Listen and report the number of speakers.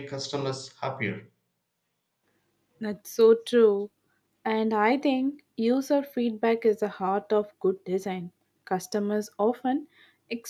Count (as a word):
two